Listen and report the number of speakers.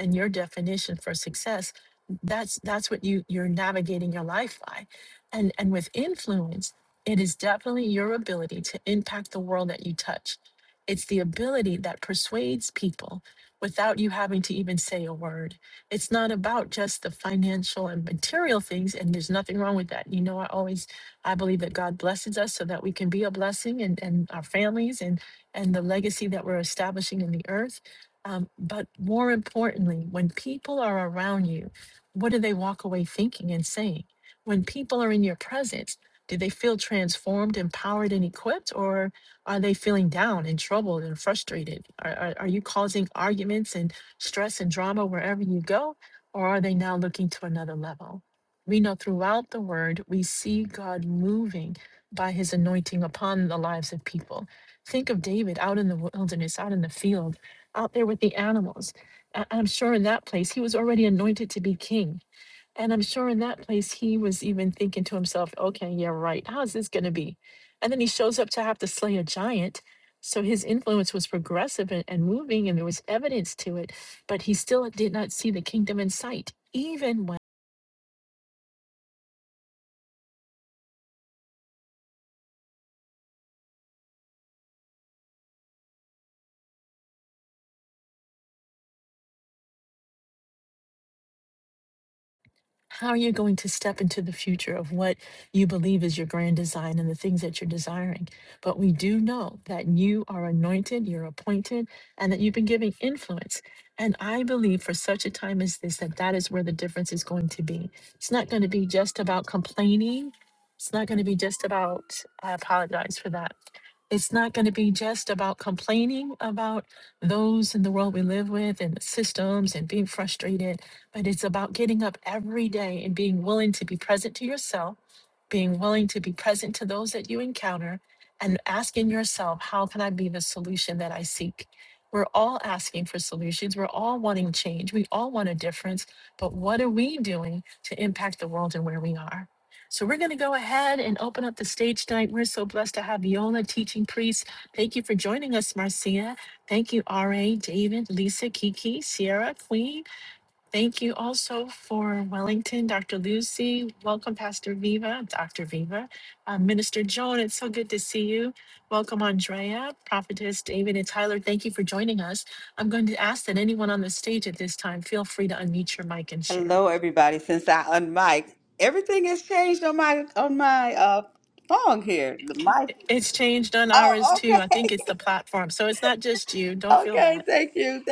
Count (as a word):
two